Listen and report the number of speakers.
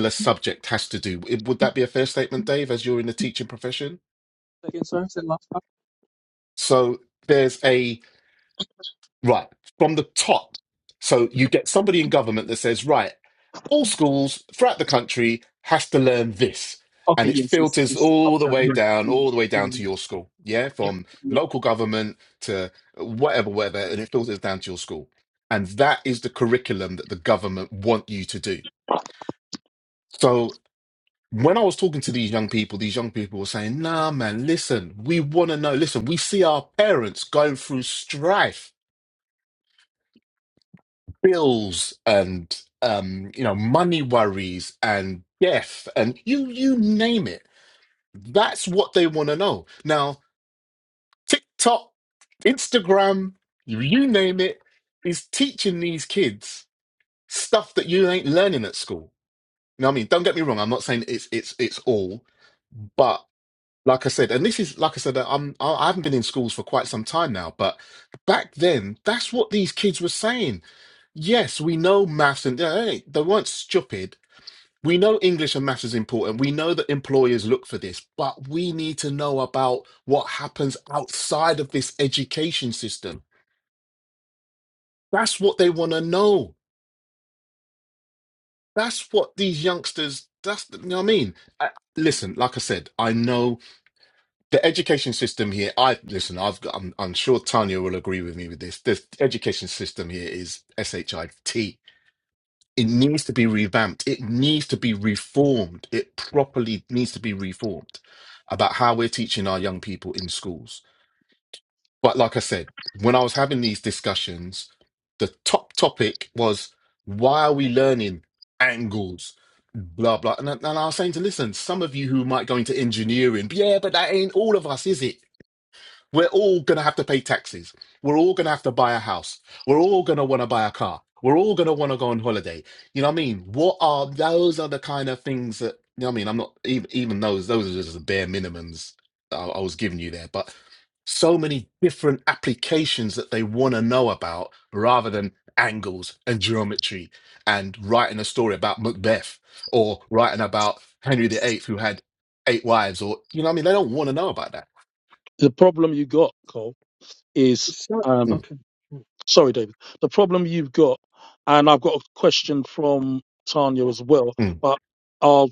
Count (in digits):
3